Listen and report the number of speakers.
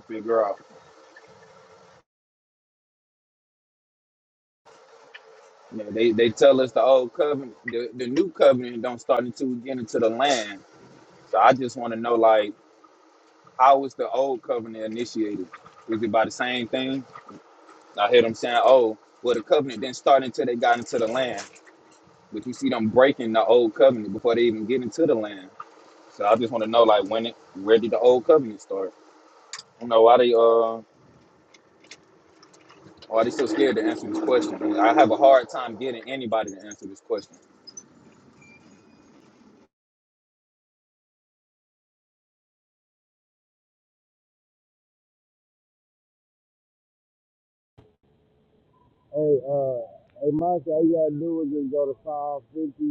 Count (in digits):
2